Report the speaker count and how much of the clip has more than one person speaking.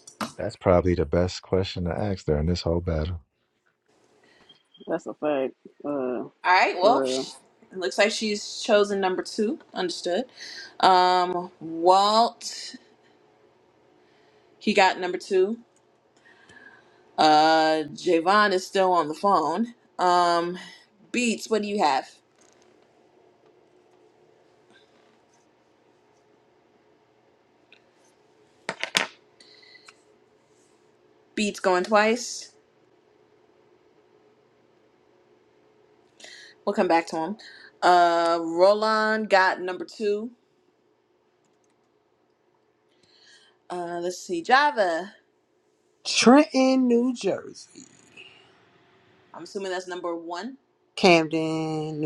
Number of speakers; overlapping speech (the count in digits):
4, about 1%